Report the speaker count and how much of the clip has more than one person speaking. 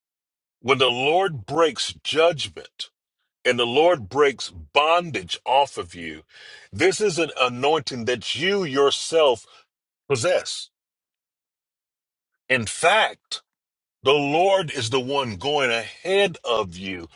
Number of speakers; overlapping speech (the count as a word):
one, no overlap